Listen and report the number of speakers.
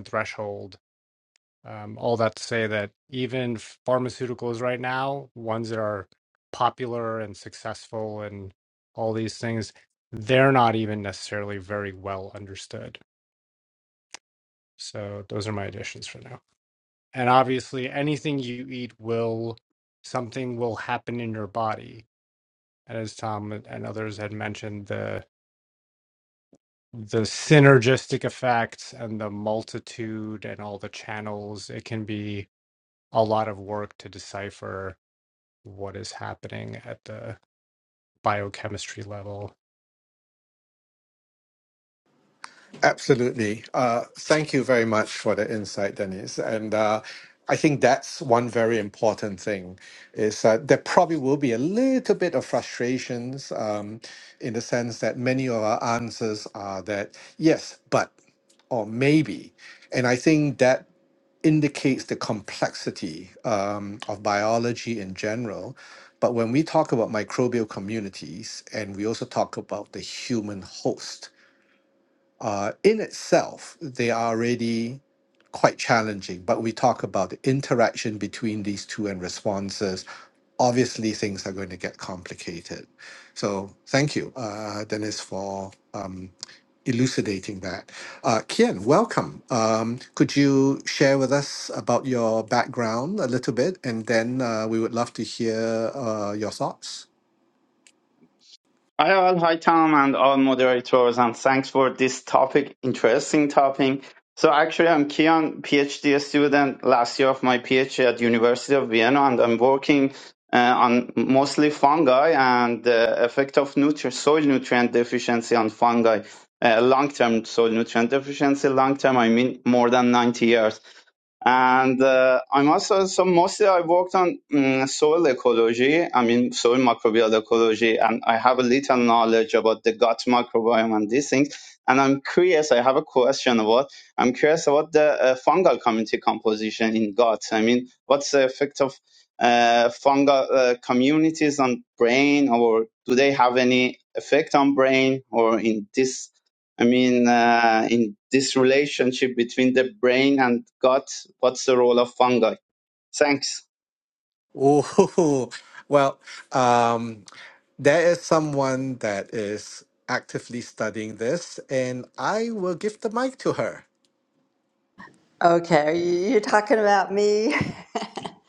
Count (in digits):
4